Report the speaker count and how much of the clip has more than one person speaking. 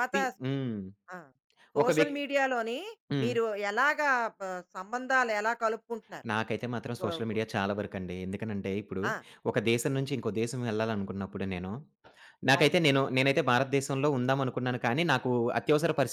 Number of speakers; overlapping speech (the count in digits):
2, about 9%